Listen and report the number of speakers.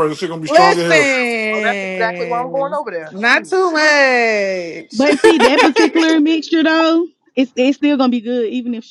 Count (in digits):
4